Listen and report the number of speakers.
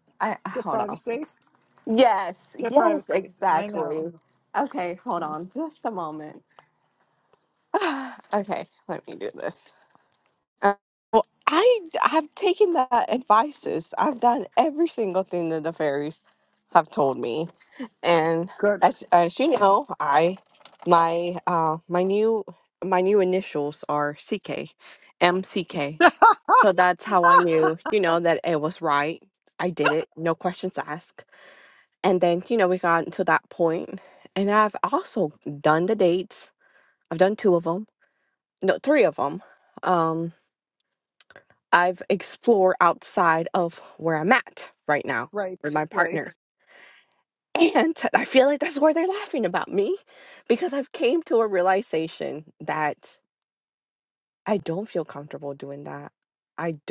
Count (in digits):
2